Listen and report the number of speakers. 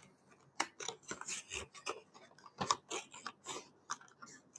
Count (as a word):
zero